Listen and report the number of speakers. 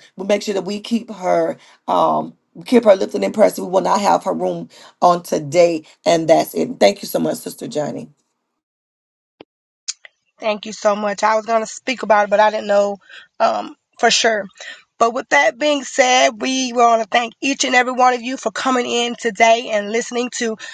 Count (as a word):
two